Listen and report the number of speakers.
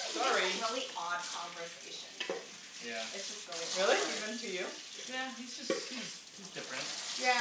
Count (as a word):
three